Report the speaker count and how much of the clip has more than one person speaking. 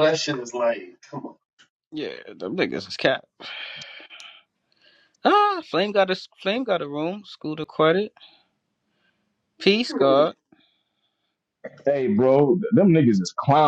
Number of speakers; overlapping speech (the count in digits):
3, about 3%